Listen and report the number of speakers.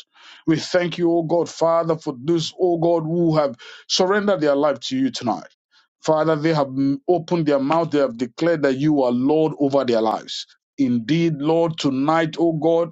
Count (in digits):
1